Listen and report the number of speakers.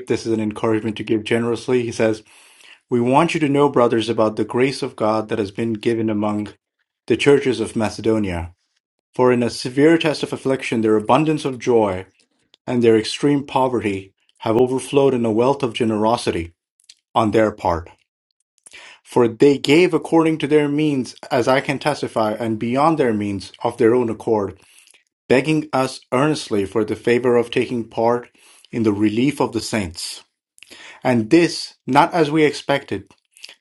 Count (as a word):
one